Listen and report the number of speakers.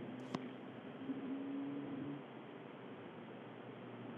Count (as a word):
zero